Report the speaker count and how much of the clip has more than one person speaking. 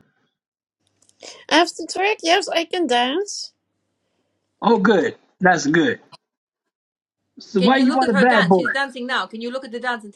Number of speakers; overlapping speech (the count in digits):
3, about 11%